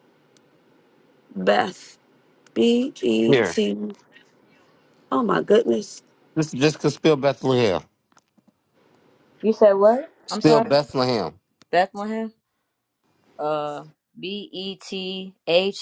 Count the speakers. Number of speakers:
3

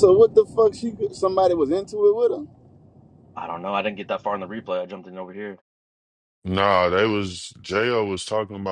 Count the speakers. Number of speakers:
3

